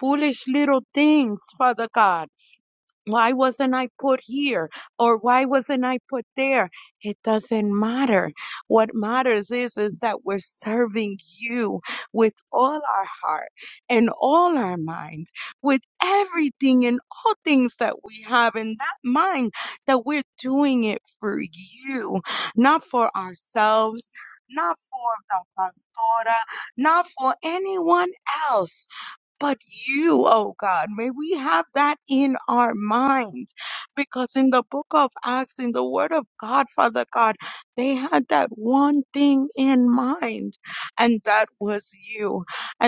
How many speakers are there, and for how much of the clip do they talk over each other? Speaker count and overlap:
1, no overlap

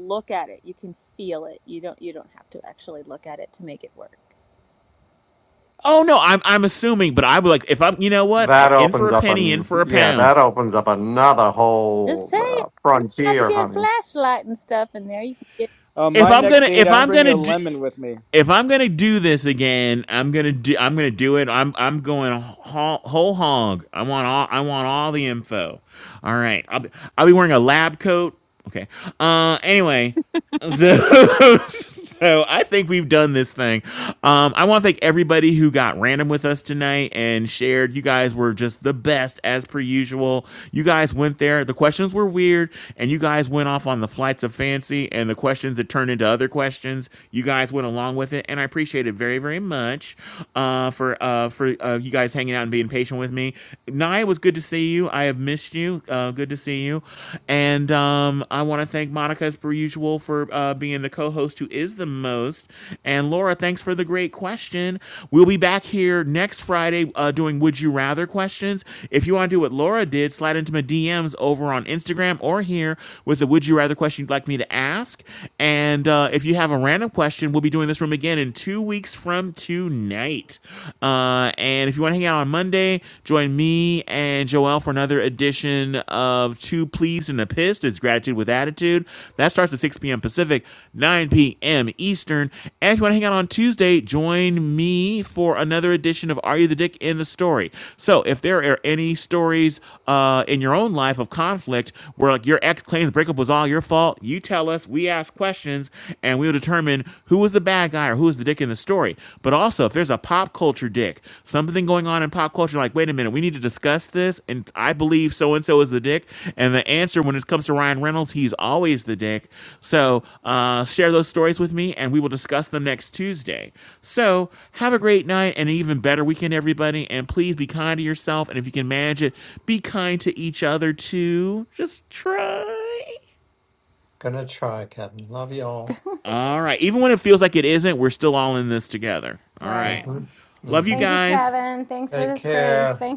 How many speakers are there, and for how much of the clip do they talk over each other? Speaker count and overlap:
5, about 5%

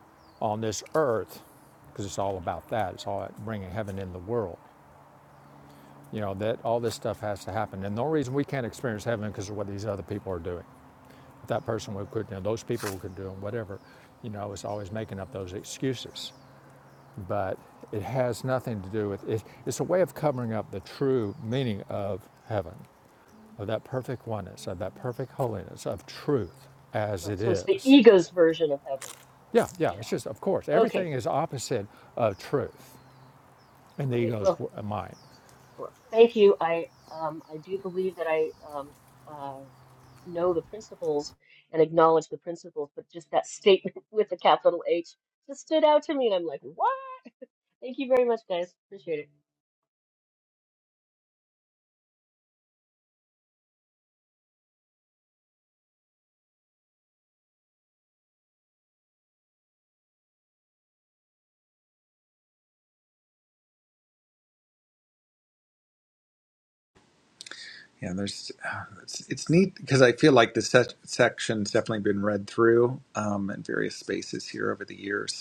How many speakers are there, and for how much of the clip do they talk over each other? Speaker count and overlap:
3, about 2%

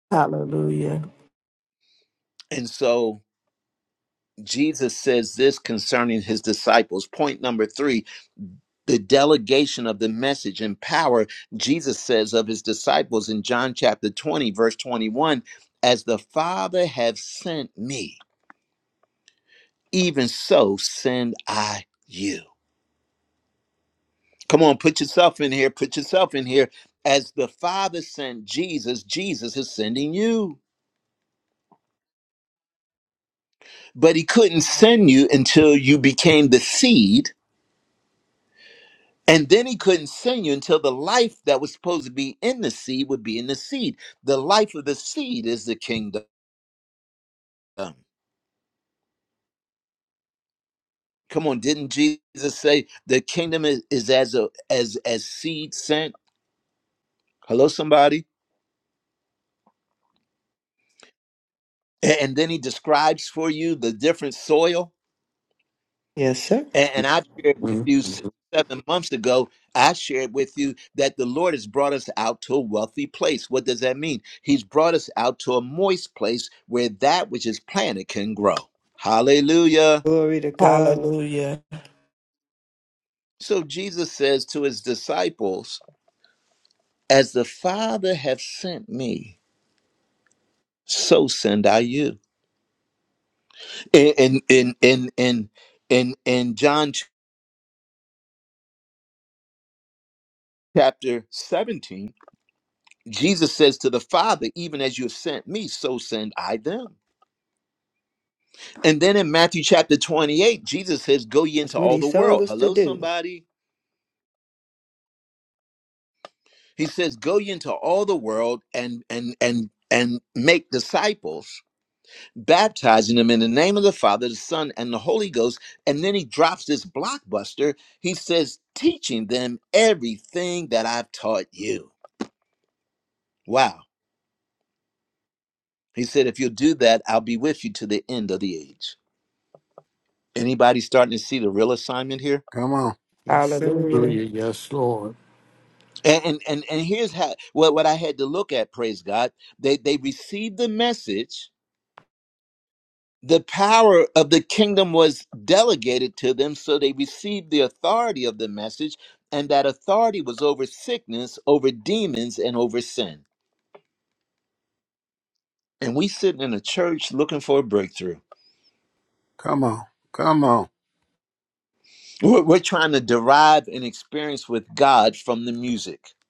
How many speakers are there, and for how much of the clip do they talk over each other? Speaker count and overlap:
5, about 2%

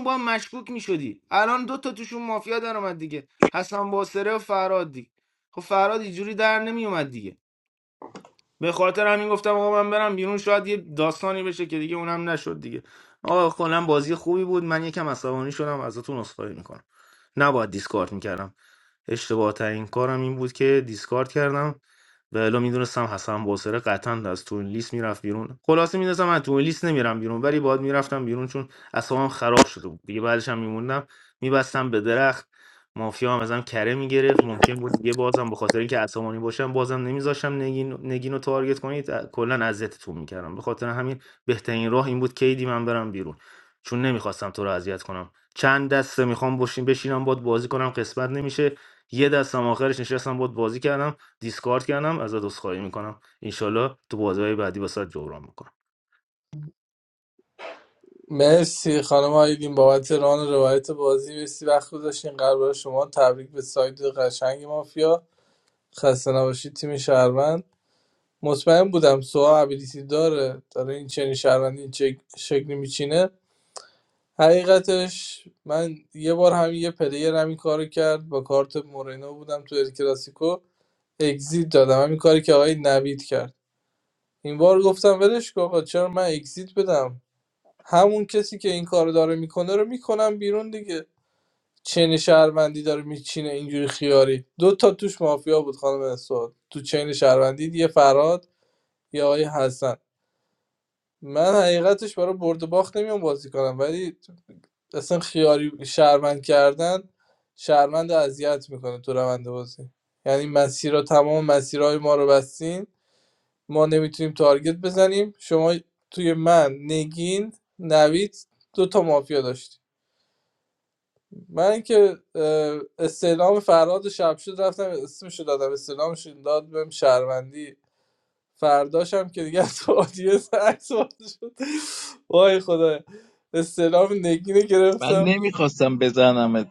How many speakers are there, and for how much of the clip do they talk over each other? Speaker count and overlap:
3, under 1%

